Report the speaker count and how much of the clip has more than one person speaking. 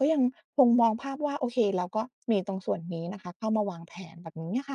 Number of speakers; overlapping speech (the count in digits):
1, no overlap